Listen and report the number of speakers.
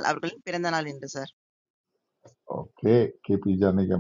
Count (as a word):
two